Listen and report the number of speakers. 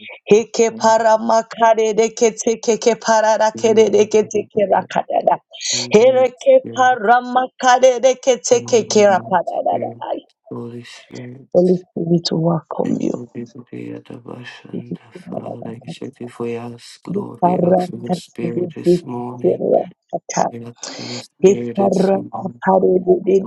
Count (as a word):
two